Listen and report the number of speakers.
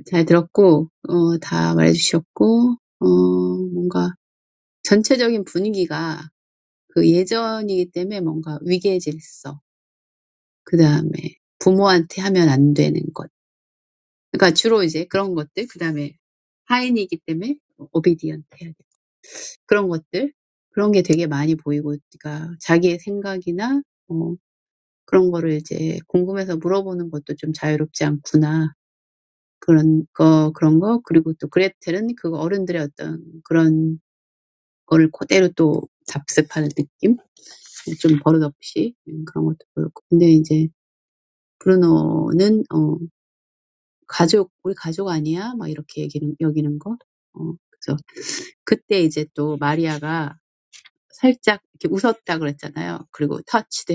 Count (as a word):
one